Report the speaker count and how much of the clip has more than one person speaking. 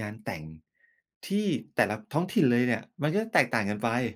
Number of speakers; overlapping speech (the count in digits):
1, no overlap